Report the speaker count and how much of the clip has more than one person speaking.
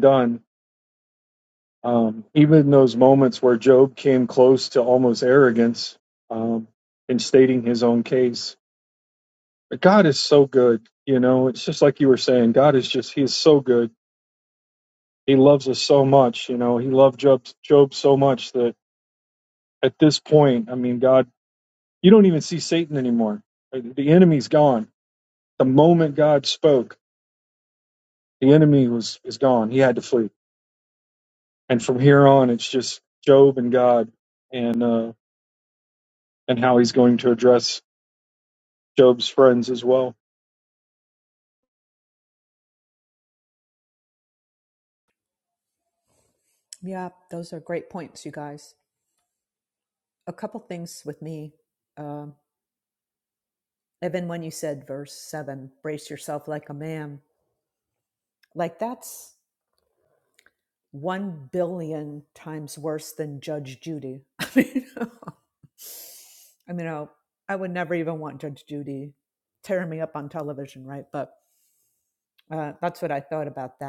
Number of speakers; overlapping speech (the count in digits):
2, no overlap